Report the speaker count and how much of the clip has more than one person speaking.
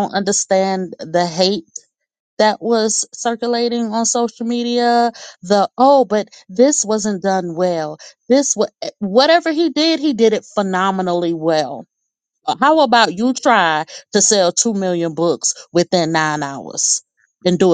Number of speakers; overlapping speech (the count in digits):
1, no overlap